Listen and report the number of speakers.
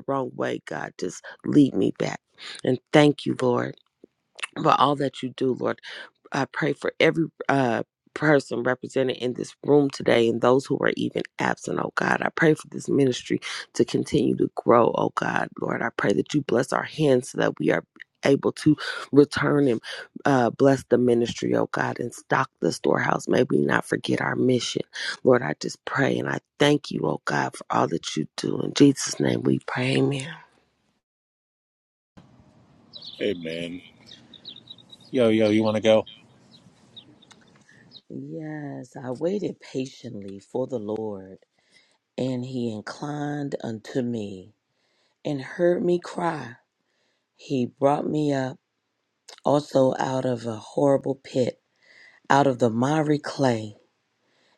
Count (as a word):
three